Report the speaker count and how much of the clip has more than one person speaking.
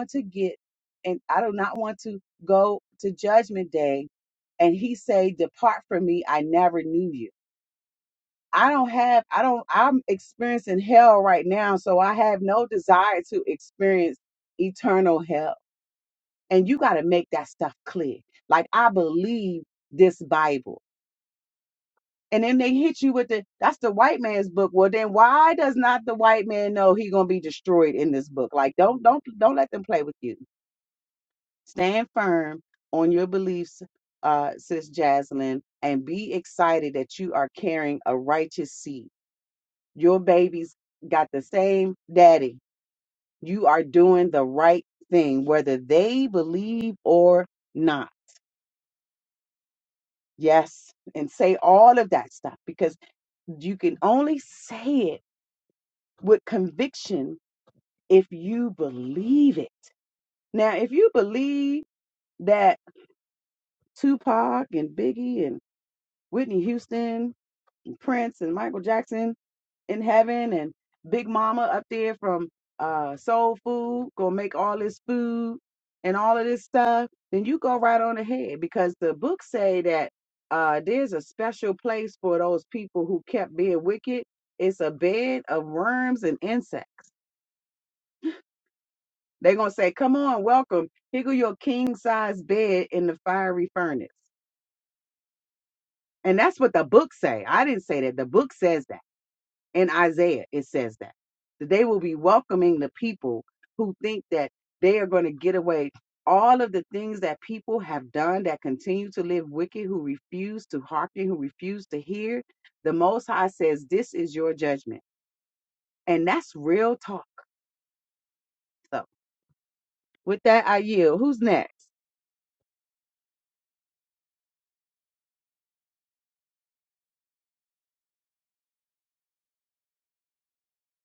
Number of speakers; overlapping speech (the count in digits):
1, no overlap